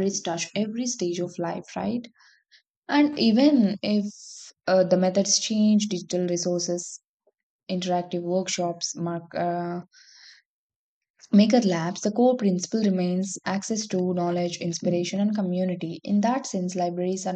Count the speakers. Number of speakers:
1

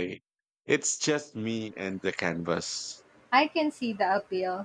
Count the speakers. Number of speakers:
2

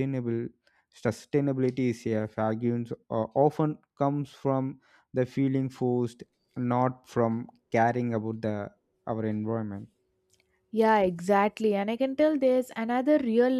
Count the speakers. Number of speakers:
2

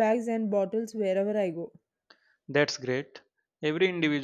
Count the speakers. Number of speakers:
2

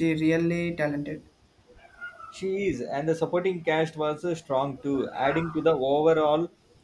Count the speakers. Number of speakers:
2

